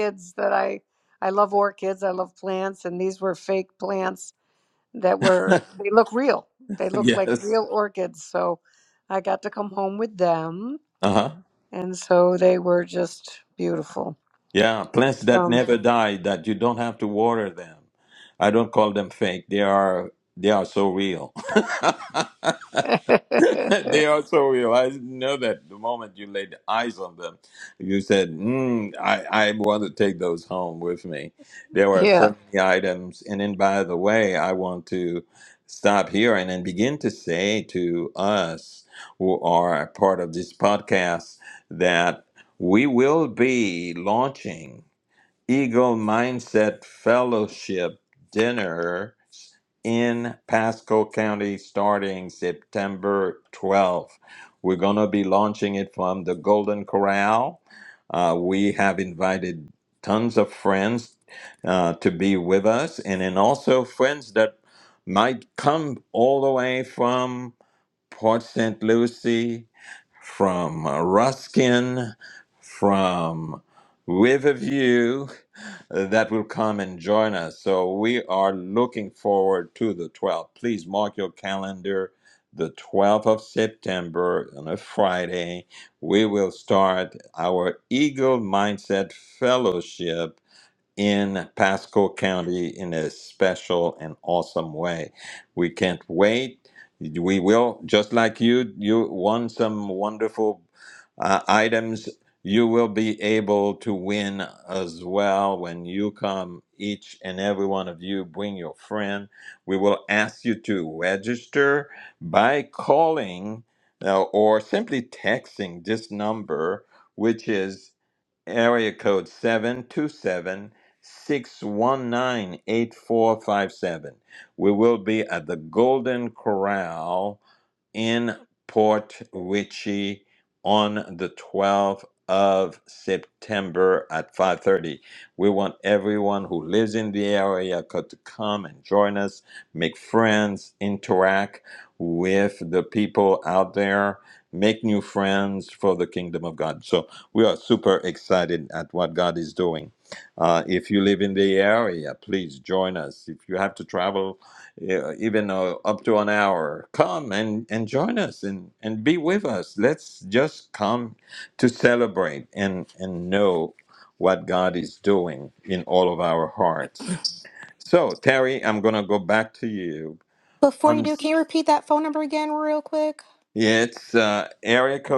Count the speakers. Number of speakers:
3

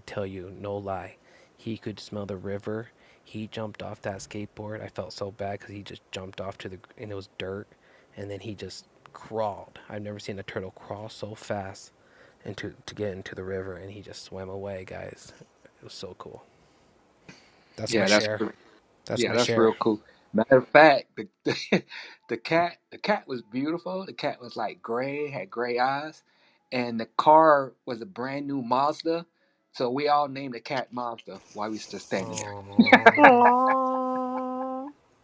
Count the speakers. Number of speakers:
3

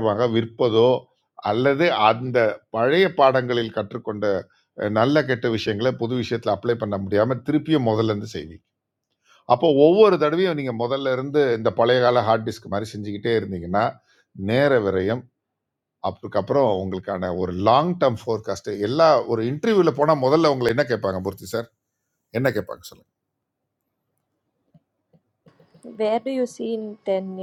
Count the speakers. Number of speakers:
2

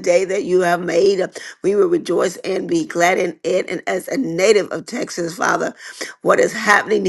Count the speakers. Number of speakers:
1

